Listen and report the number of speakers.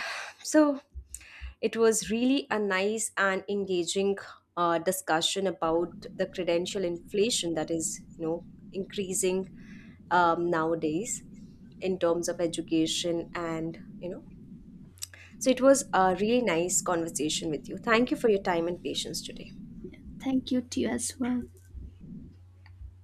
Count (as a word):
two